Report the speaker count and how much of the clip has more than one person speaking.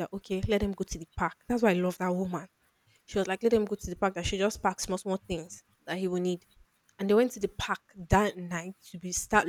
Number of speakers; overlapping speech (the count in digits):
1, no overlap